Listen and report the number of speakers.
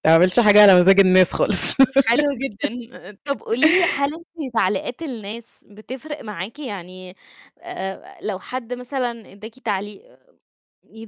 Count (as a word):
two